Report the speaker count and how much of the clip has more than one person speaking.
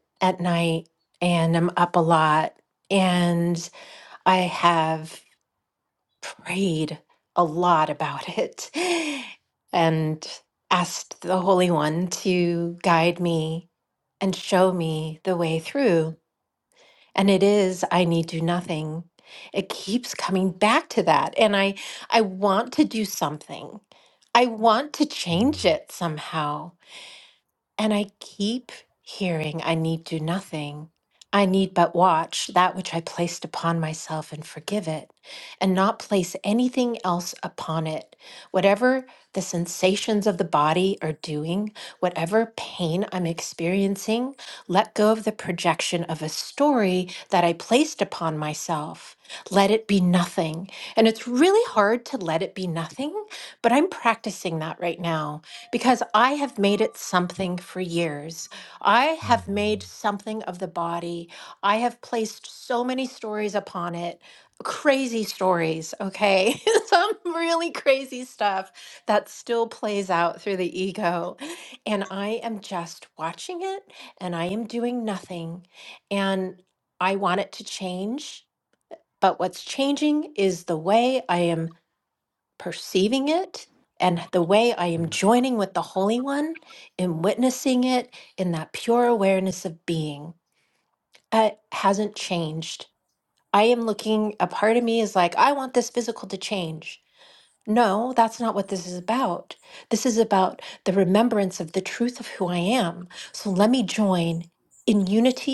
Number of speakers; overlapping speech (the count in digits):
1, no overlap